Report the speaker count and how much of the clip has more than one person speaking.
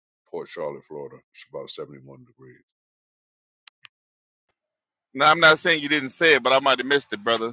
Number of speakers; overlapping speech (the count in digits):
2, no overlap